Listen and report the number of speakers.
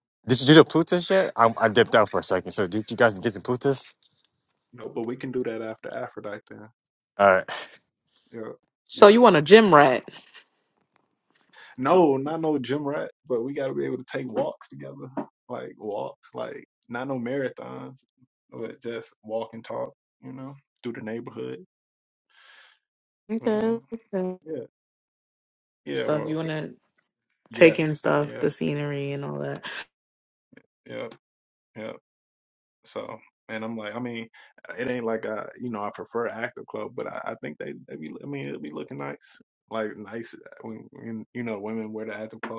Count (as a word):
three